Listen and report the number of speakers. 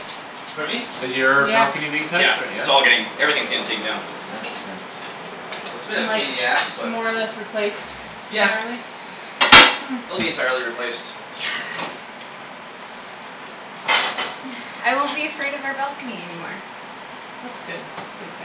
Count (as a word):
four